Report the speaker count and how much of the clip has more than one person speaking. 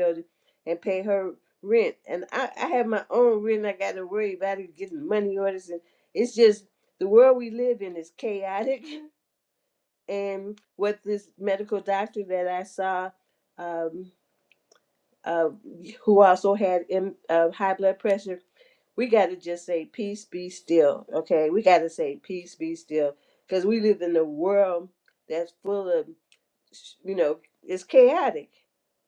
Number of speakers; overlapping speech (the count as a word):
one, no overlap